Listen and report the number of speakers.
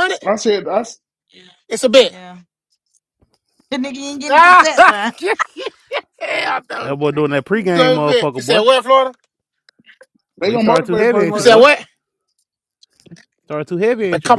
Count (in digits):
4